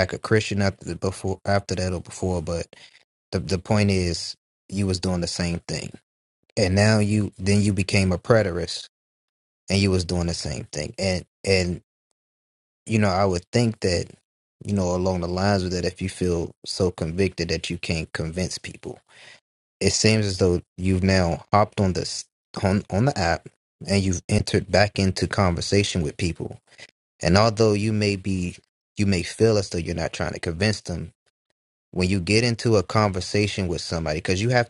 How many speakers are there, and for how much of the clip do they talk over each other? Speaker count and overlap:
one, no overlap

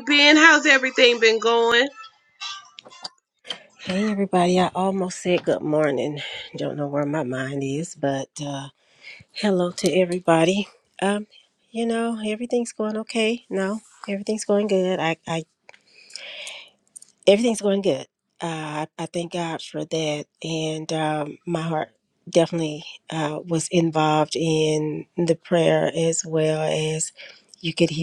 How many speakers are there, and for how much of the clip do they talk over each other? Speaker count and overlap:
two, no overlap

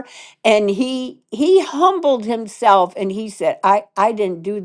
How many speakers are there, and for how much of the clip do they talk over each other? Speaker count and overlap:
one, no overlap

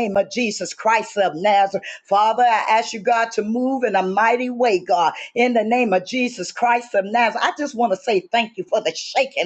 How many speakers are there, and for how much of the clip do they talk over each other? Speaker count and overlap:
one, no overlap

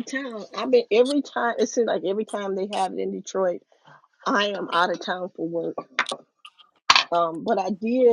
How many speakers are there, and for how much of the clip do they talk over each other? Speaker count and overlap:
one, no overlap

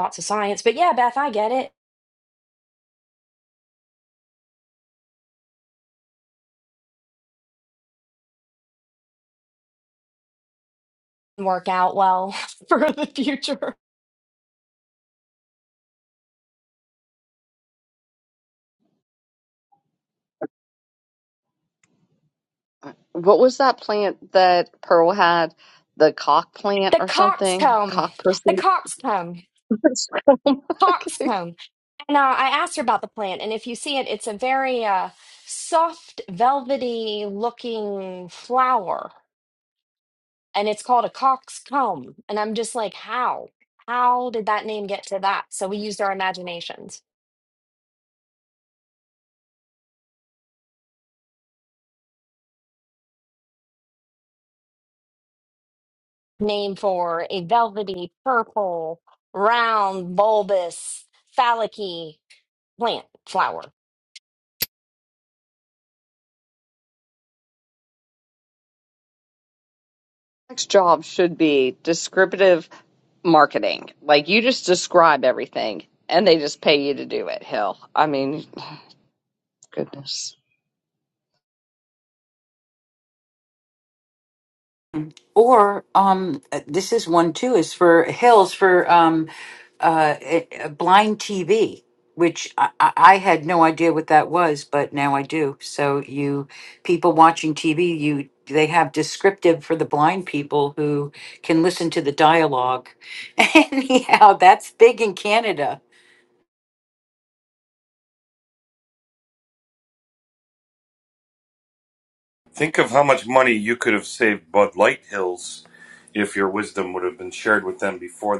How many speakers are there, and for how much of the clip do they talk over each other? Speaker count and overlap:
four, about 2%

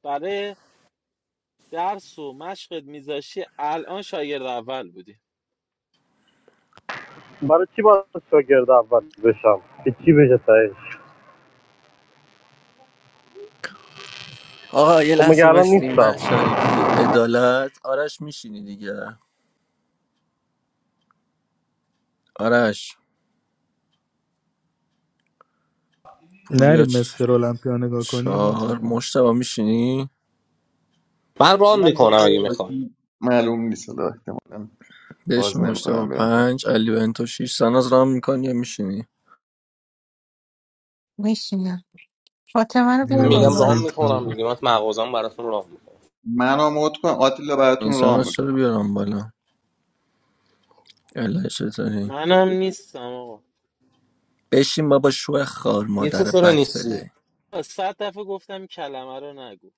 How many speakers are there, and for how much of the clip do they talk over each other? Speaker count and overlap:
seven, about 13%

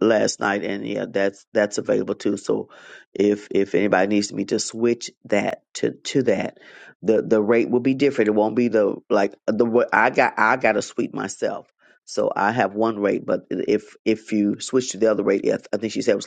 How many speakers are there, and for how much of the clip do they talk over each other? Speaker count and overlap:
one, no overlap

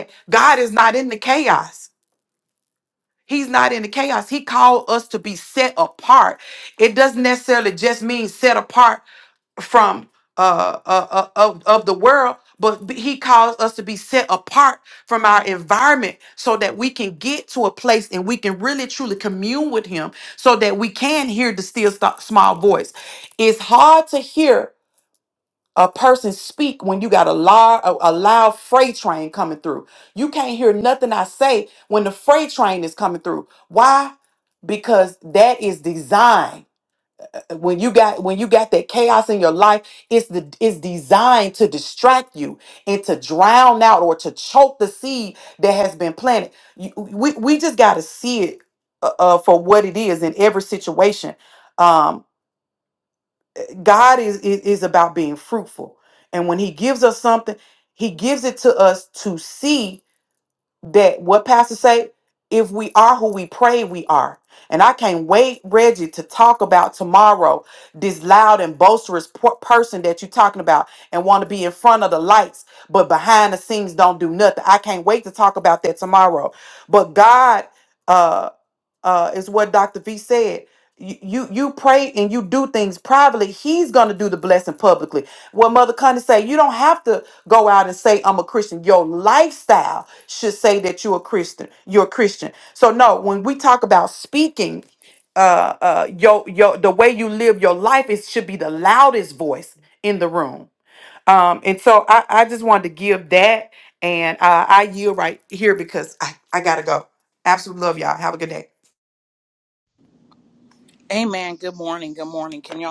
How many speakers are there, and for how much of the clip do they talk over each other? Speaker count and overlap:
two, no overlap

